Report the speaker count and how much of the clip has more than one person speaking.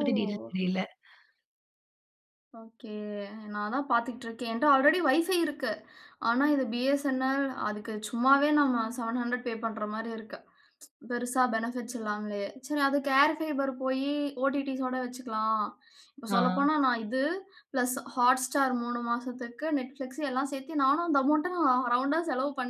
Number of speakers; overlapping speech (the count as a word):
two, about 1%